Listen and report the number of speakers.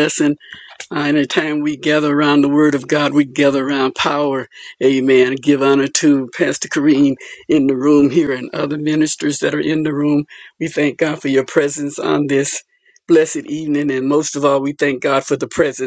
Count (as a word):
one